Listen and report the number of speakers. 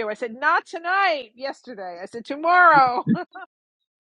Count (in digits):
1